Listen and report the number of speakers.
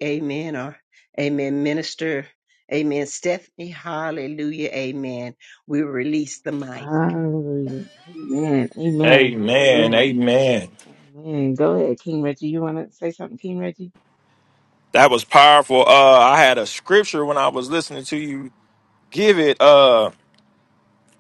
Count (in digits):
3